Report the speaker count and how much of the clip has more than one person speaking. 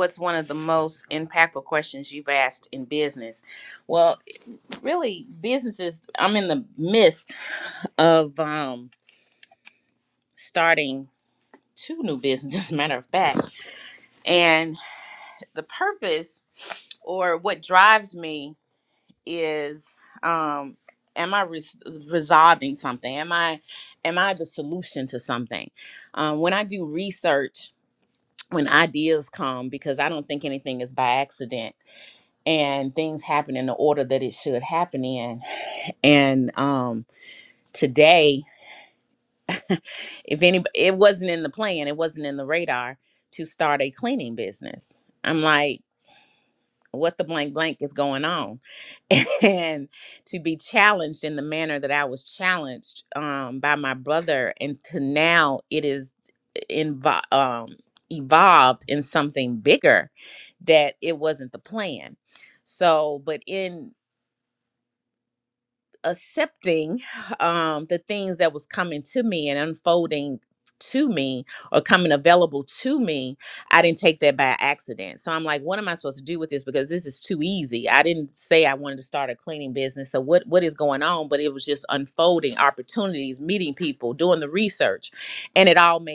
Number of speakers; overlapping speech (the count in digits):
1, no overlap